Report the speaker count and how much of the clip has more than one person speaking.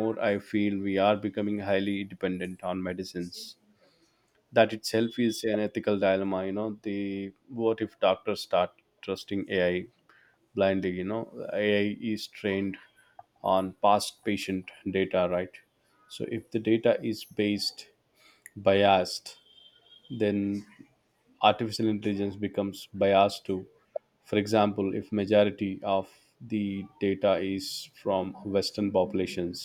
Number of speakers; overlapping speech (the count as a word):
one, no overlap